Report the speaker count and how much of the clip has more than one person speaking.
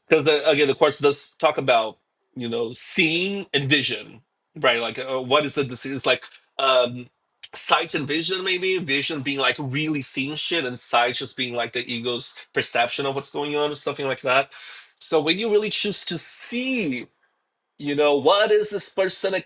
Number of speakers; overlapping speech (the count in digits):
1, no overlap